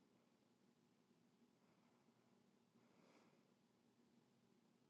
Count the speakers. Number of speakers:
0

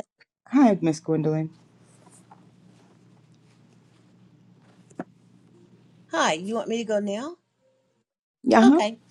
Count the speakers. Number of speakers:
2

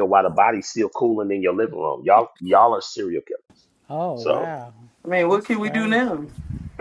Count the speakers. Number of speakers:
3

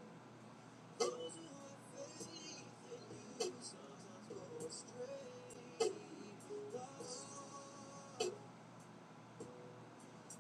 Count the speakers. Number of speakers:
0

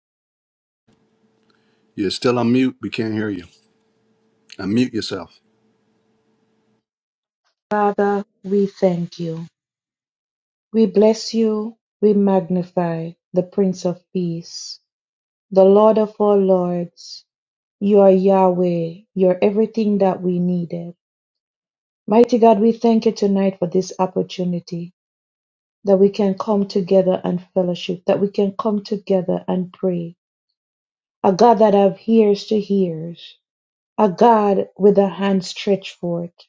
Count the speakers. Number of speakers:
2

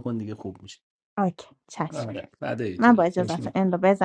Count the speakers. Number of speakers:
2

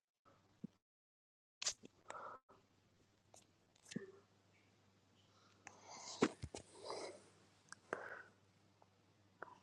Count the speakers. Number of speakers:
0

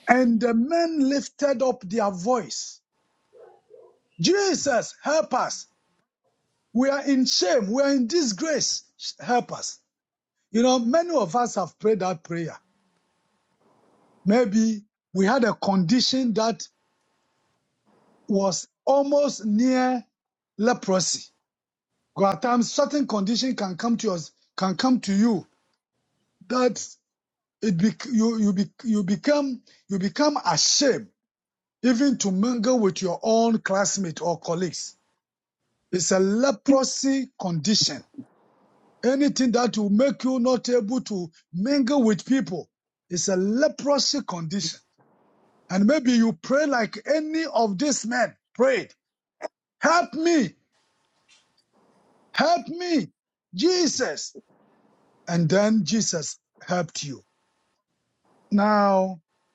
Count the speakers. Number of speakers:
1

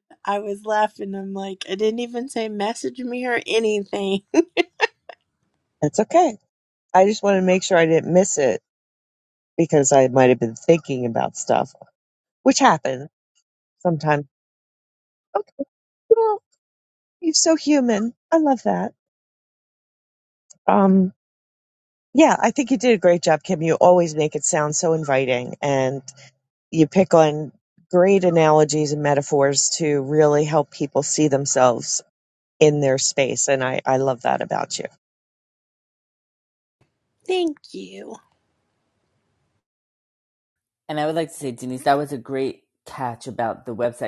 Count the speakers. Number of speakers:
3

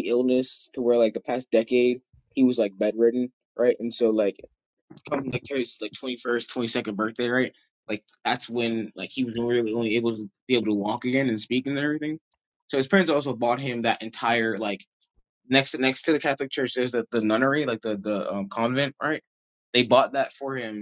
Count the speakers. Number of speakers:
1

